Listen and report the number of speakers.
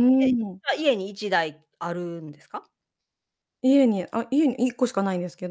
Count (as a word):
two